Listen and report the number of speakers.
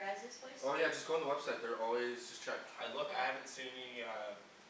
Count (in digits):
3